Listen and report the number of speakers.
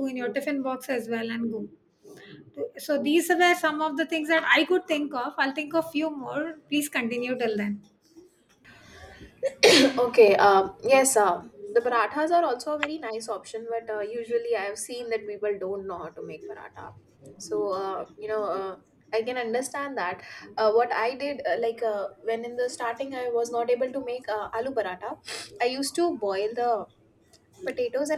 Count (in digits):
2